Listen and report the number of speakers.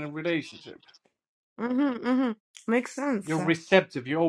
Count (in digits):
2